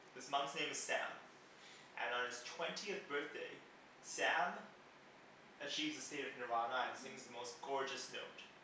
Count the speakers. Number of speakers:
1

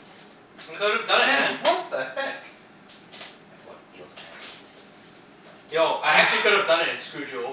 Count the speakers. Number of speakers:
3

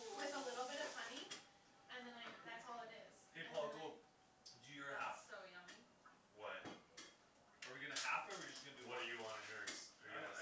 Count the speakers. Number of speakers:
4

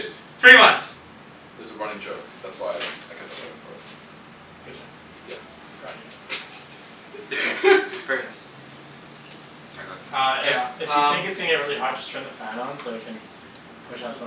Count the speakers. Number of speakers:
3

